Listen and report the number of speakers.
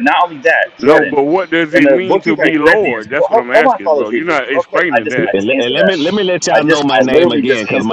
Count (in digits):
3